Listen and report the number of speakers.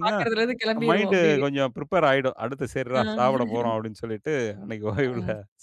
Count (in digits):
2